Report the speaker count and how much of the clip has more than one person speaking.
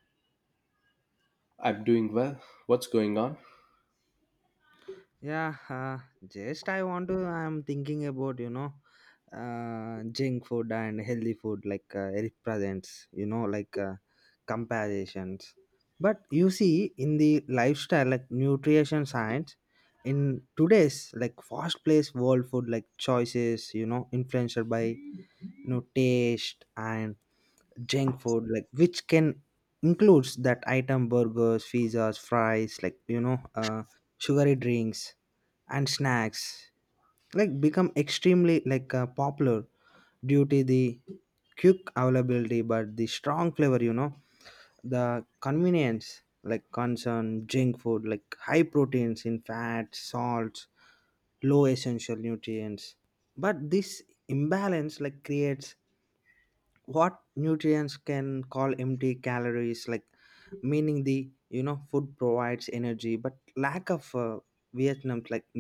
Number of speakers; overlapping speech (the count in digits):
2, no overlap